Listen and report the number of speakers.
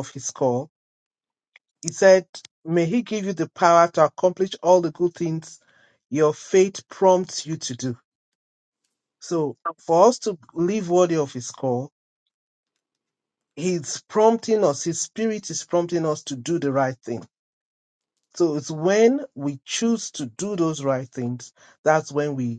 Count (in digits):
1